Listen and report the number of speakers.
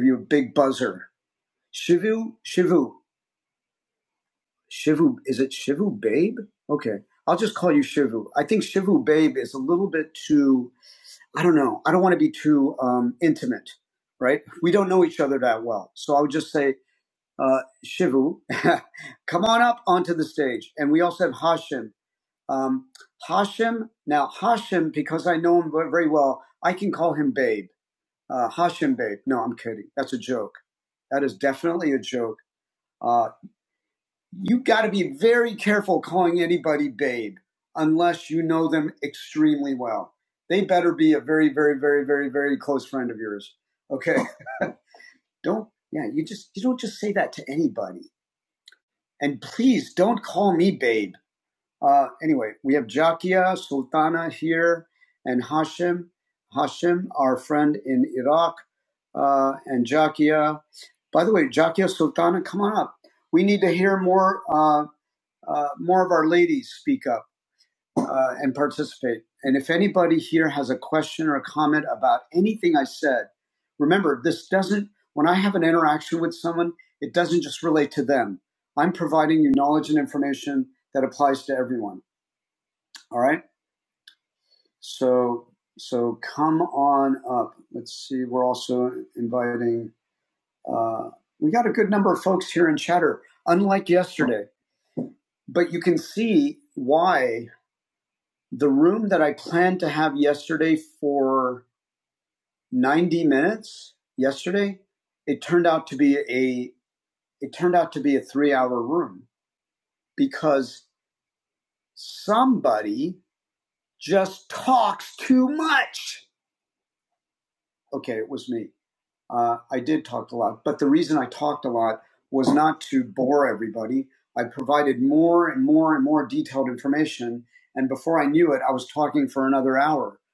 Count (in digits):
1